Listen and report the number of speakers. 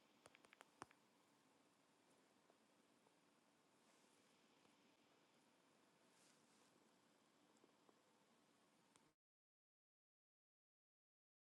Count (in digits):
0